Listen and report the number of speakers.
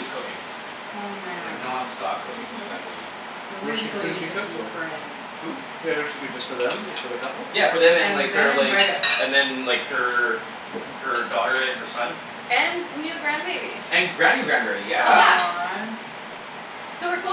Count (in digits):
4